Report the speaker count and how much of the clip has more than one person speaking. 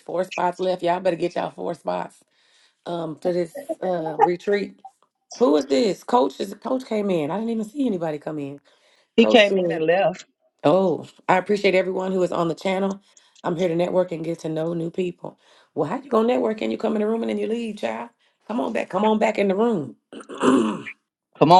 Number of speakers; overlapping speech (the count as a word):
two, about 3%